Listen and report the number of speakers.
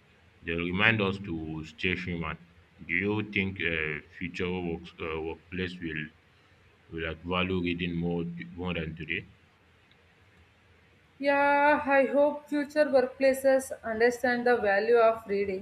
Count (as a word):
two